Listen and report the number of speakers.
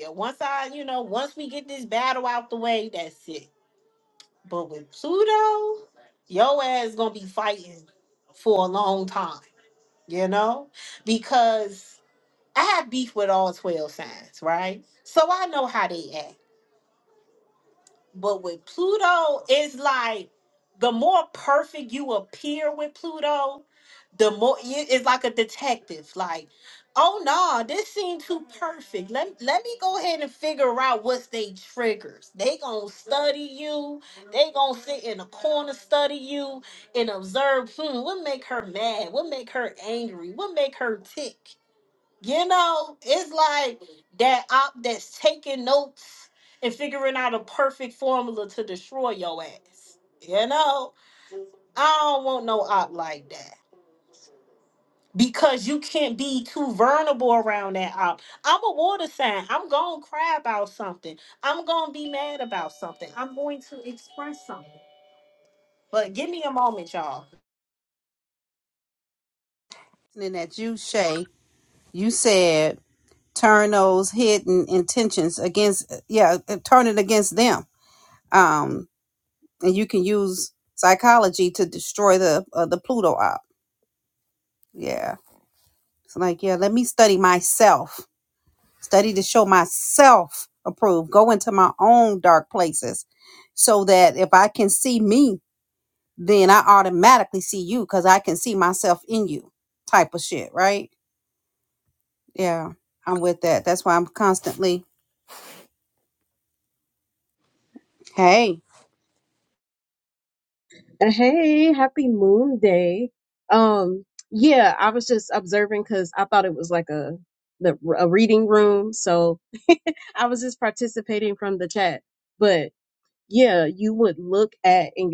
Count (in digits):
3